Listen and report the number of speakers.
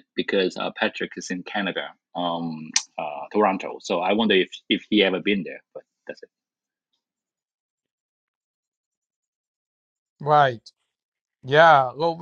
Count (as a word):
two